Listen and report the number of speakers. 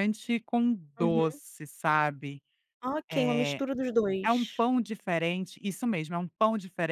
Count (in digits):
2